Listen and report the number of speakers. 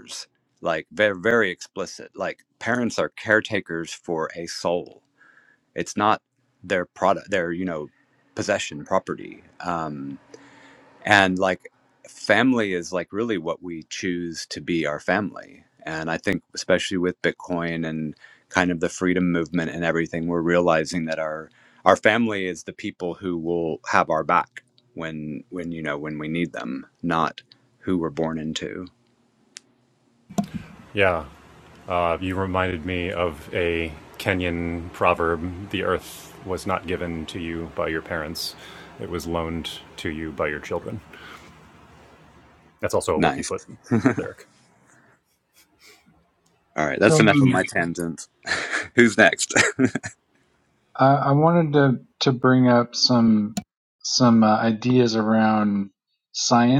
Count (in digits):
3